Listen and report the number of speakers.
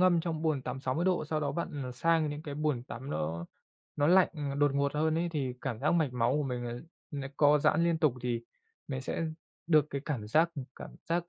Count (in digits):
1